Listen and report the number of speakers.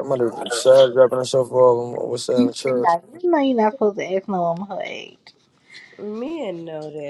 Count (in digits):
3